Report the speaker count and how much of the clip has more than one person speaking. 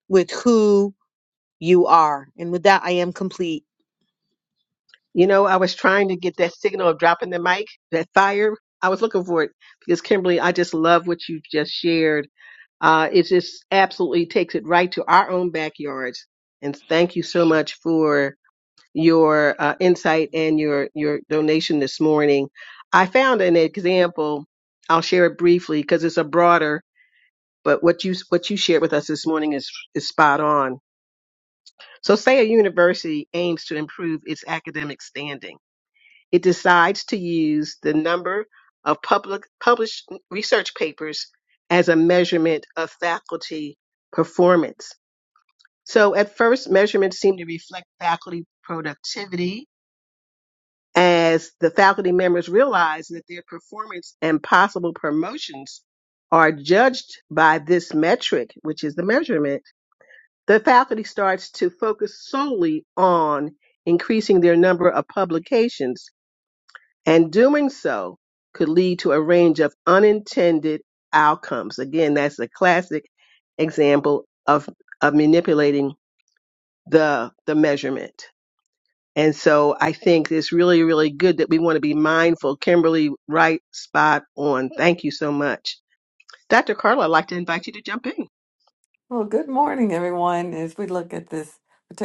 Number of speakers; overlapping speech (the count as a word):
three, no overlap